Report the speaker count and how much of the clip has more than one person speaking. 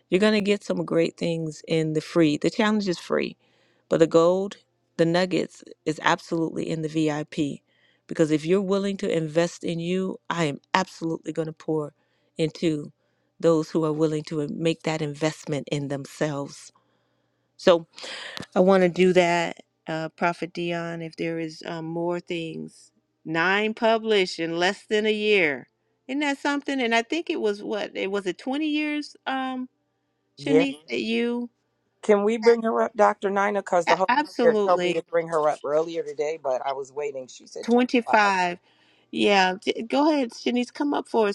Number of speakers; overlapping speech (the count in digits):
2, about 3%